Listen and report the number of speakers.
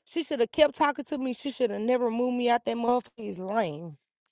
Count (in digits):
1